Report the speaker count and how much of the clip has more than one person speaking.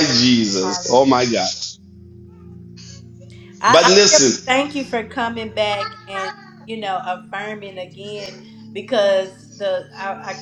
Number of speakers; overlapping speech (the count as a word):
two, about 11%